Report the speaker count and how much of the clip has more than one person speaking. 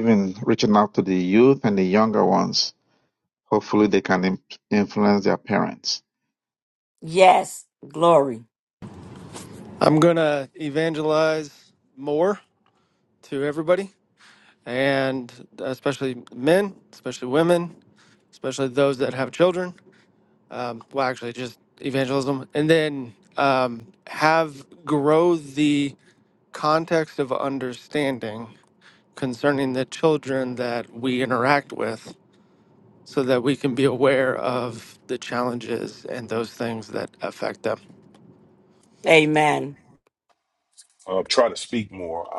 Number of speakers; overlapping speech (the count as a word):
four, no overlap